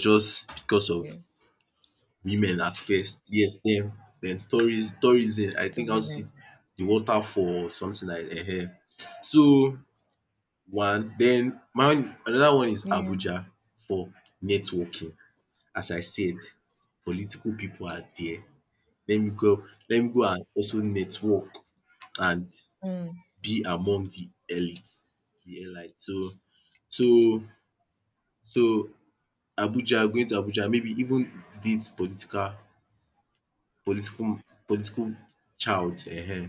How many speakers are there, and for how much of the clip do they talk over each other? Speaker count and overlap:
2, about 3%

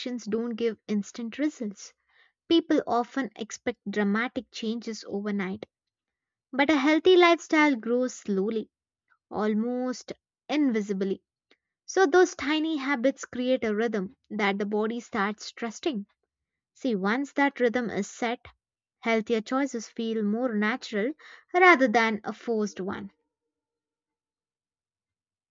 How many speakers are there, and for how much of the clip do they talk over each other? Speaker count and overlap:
1, no overlap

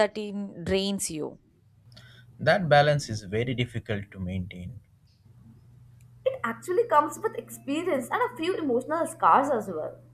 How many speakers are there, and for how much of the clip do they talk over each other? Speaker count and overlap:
3, no overlap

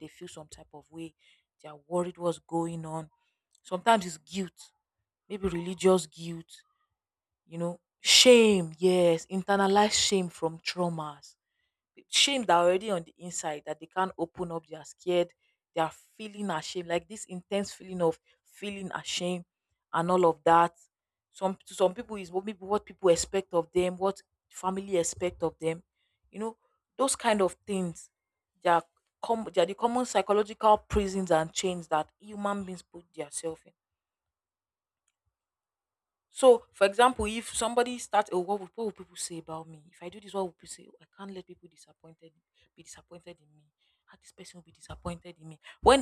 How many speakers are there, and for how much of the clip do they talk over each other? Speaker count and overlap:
1, no overlap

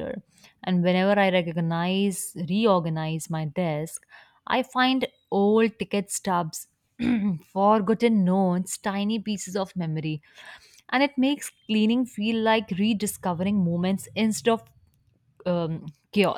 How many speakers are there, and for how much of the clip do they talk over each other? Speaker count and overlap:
1, no overlap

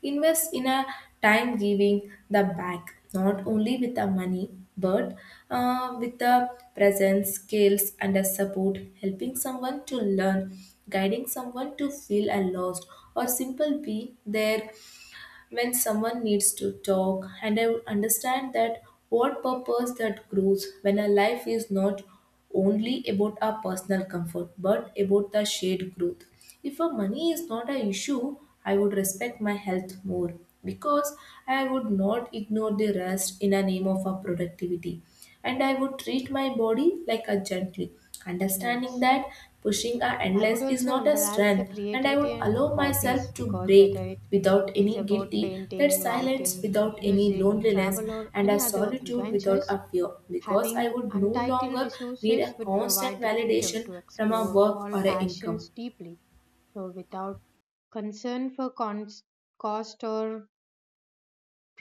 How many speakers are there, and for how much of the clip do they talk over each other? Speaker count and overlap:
2, about 23%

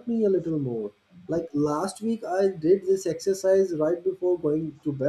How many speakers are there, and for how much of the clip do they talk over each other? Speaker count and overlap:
1, no overlap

